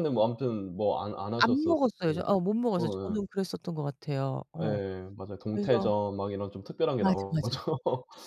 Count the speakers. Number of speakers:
2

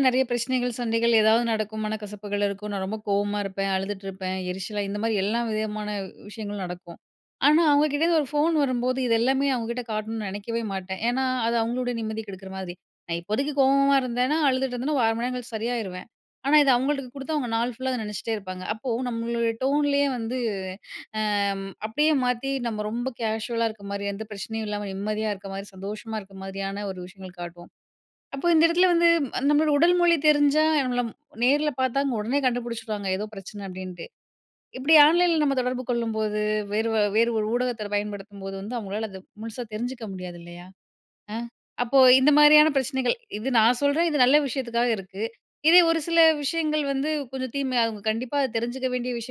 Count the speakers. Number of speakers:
1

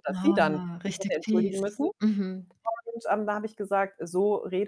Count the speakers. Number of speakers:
2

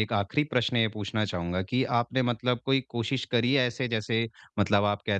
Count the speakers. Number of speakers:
1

